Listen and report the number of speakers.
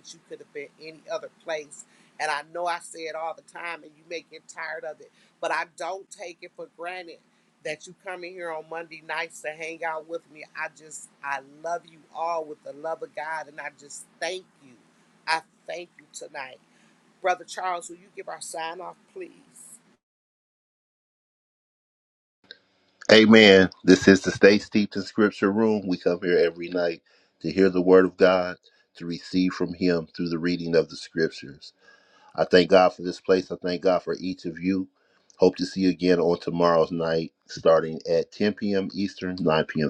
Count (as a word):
two